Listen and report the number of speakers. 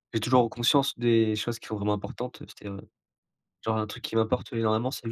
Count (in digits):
1